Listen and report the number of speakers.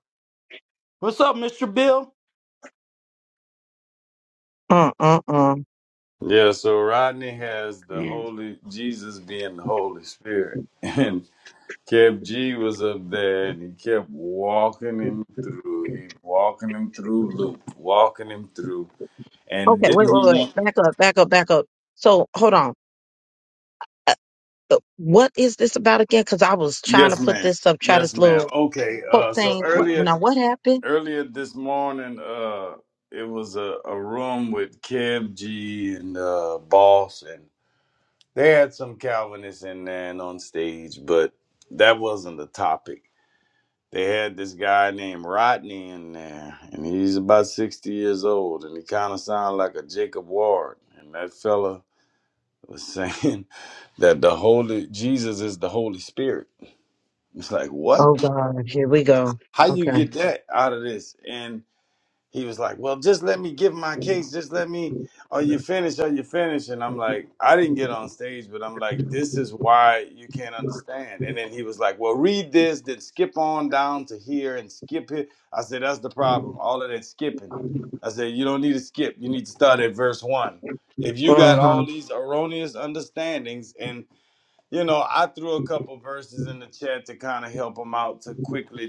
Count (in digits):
3